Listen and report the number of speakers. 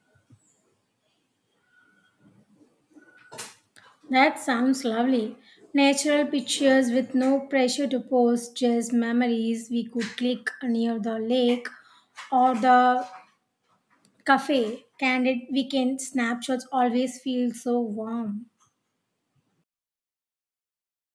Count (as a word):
one